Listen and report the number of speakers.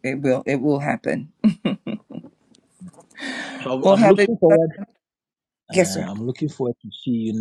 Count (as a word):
two